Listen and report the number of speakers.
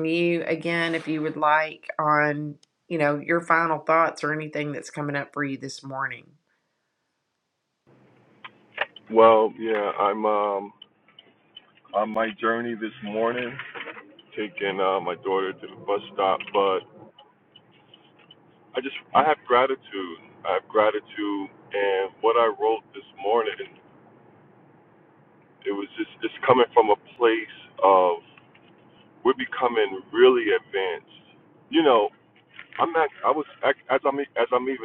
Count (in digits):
2